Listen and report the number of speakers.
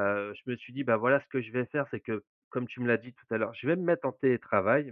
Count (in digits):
1